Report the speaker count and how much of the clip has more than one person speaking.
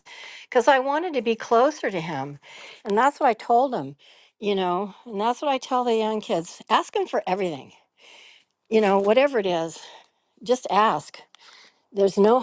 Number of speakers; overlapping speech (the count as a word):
one, no overlap